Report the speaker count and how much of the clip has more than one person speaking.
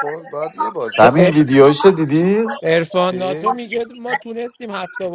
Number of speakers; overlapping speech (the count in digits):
3, about 16%